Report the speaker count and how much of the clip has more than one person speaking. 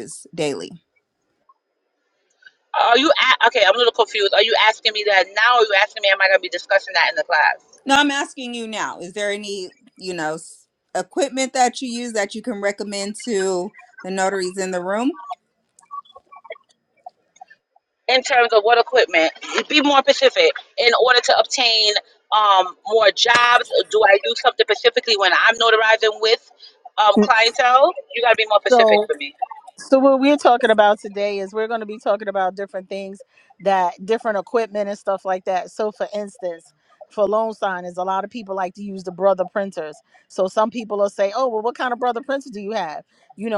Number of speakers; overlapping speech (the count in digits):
3, about 1%